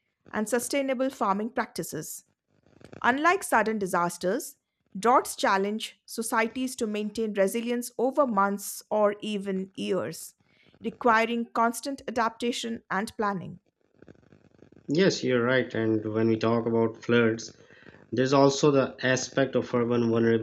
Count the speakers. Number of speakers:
2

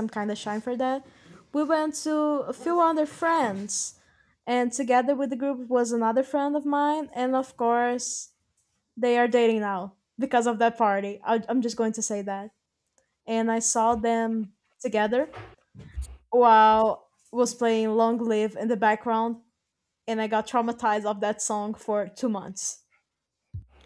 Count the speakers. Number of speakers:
1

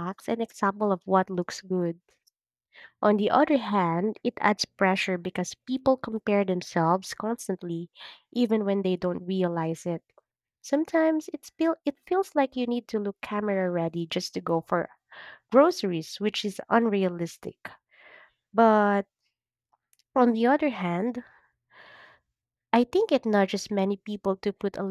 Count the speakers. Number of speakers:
1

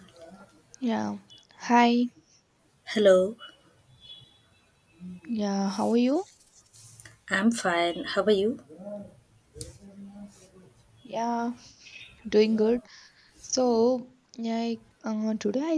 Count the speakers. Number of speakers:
2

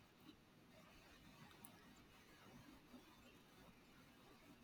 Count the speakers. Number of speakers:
0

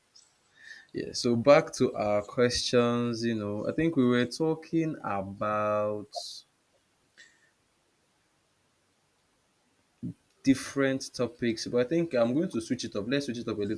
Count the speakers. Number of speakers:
1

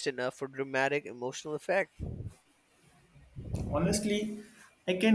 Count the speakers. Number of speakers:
2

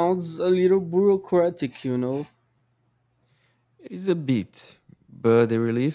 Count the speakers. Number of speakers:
2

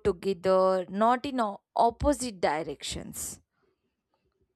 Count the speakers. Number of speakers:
1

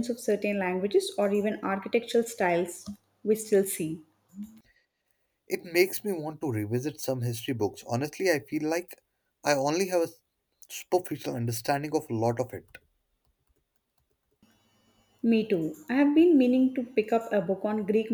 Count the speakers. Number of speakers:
2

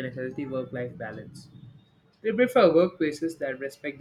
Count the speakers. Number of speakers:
1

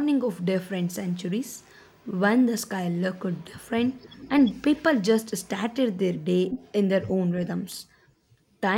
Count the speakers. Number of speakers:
1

